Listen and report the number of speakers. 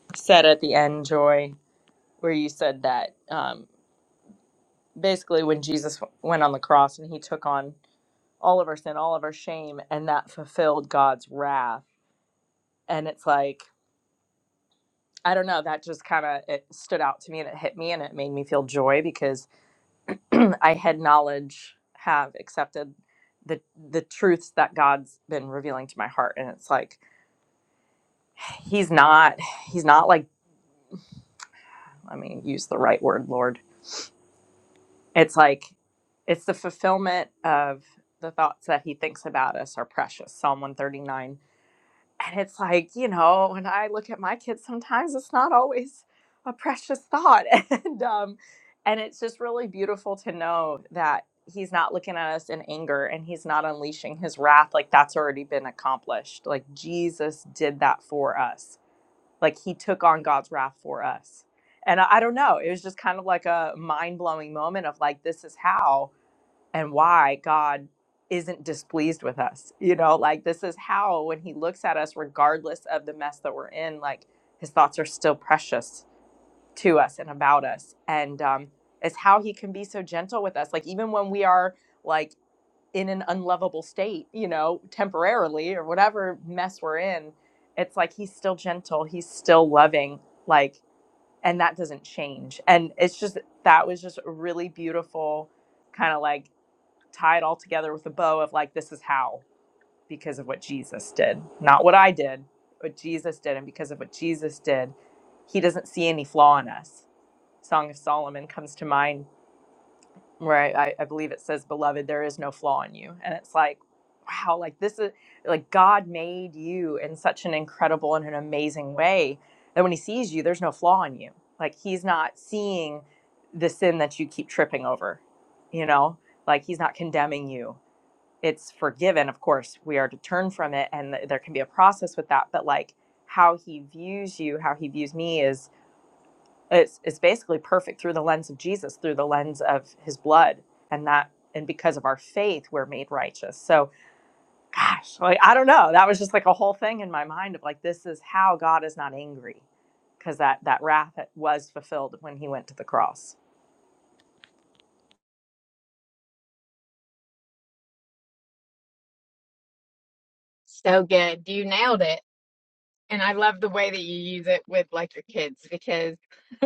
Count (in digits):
2